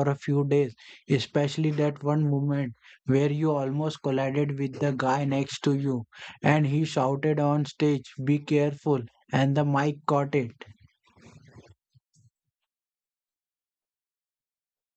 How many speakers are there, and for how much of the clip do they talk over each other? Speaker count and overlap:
1, no overlap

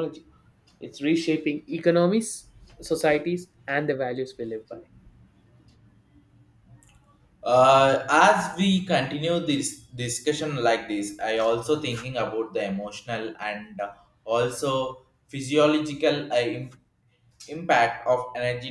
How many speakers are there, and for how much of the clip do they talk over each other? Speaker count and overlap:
2, no overlap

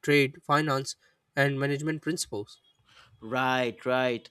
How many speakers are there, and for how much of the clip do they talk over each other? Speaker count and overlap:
2, no overlap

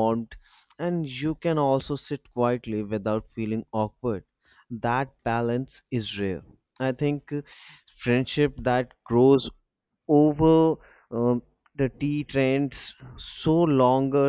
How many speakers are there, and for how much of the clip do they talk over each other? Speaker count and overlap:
1, no overlap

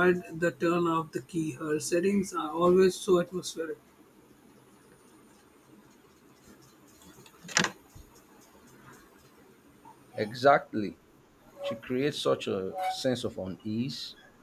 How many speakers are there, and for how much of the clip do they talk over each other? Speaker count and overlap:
2, no overlap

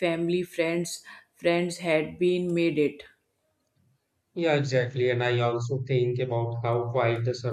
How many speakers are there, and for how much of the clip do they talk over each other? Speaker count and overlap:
2, no overlap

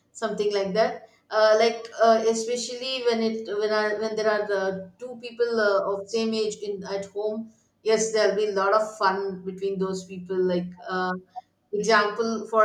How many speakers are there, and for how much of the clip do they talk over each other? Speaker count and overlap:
1, no overlap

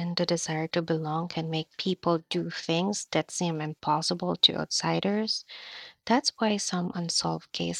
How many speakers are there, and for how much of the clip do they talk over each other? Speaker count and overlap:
1, no overlap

